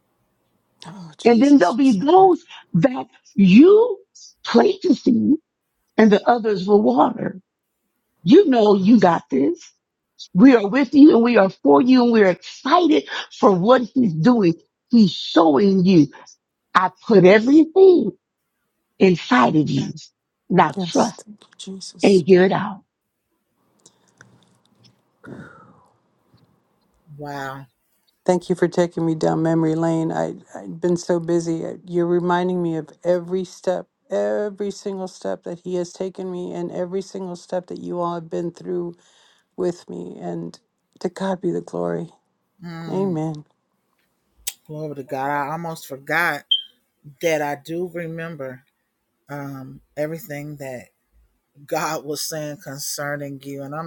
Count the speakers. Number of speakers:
3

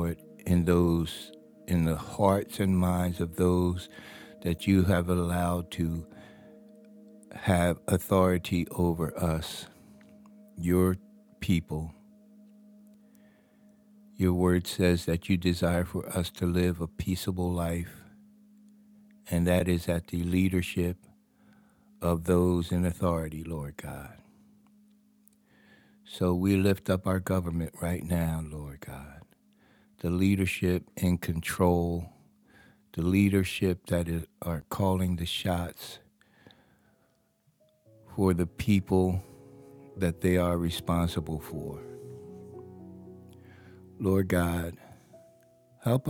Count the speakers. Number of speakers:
1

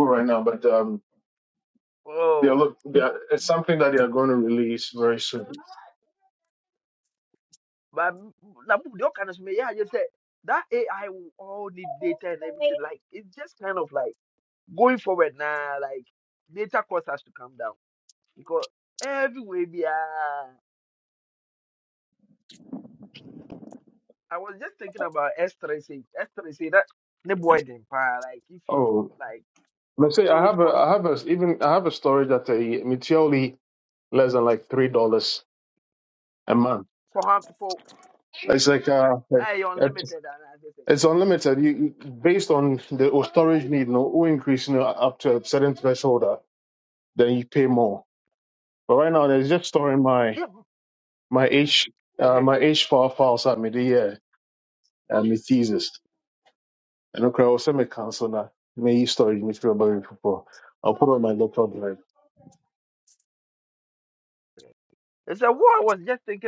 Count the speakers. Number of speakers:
2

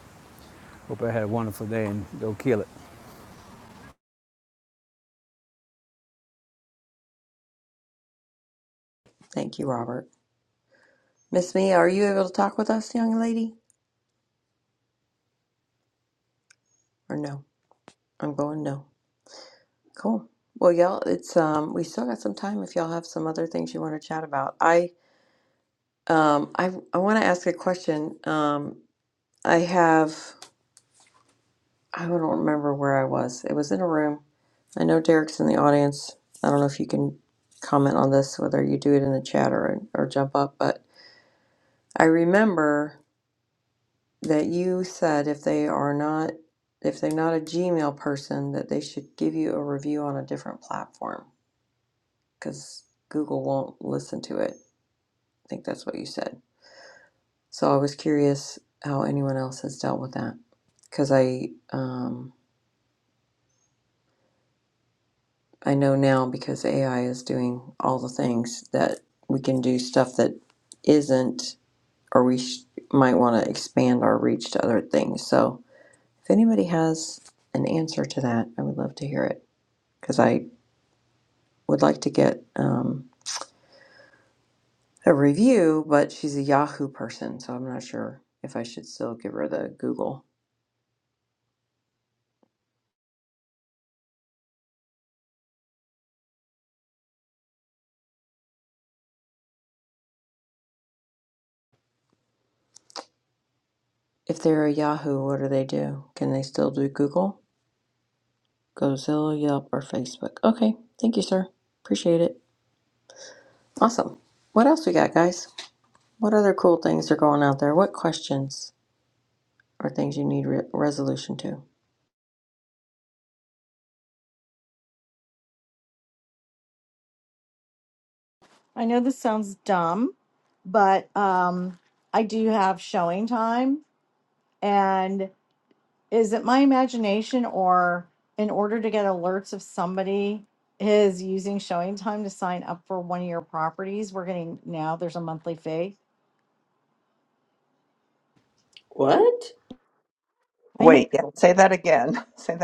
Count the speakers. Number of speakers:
4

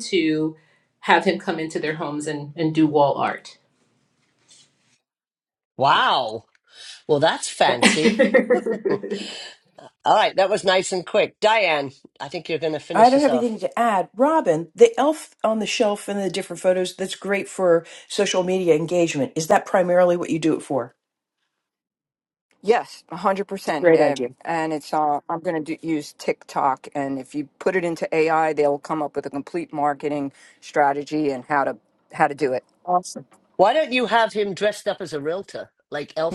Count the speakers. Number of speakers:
4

